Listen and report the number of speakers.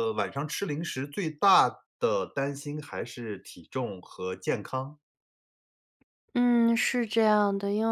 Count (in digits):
2